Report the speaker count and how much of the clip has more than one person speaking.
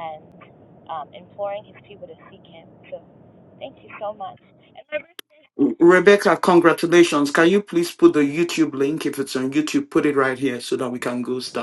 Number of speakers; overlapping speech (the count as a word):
two, no overlap